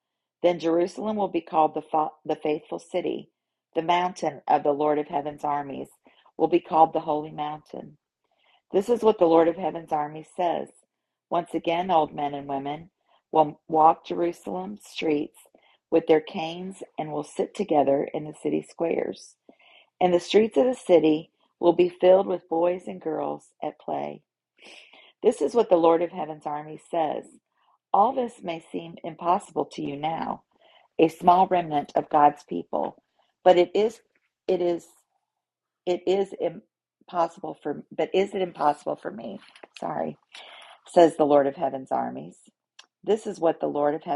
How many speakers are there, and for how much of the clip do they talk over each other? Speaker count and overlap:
1, no overlap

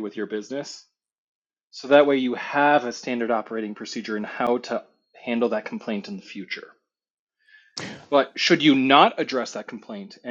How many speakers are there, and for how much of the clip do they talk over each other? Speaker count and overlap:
1, no overlap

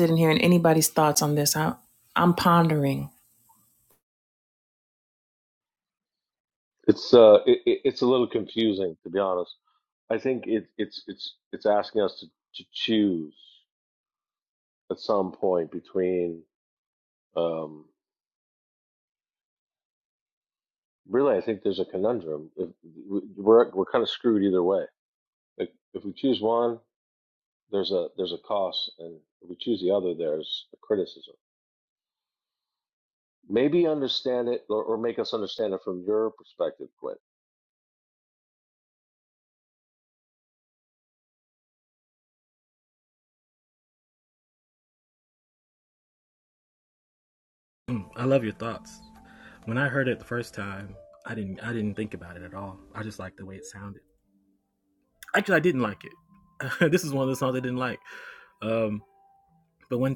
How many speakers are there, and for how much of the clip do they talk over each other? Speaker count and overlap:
3, no overlap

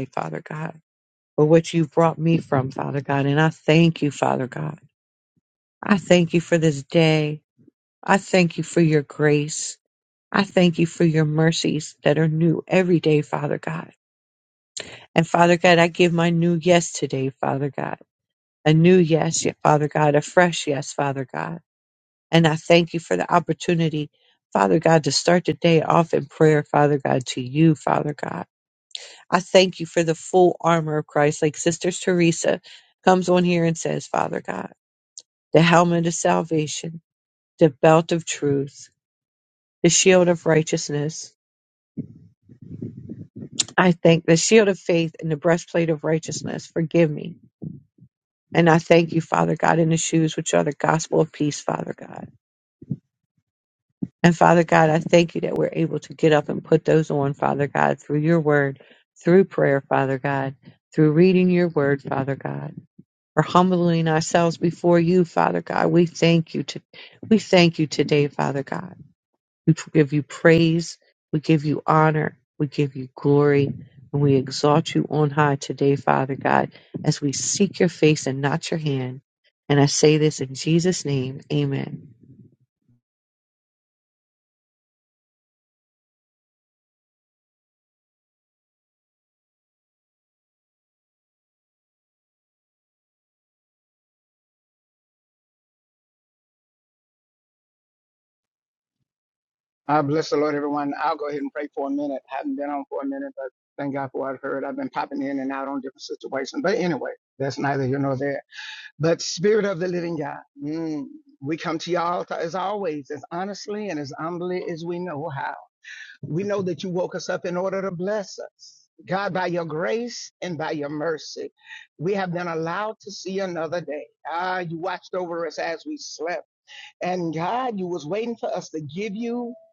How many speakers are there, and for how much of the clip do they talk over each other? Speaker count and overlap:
2, no overlap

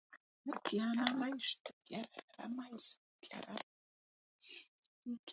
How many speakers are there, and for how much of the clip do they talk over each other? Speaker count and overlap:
1, no overlap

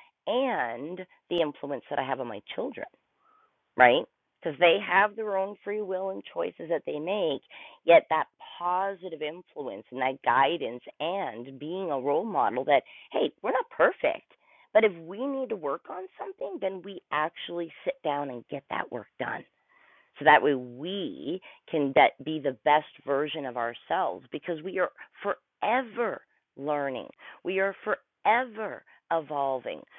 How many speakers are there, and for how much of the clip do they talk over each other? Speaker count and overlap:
1, no overlap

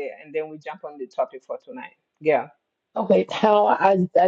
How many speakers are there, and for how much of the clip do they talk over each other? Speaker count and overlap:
2, no overlap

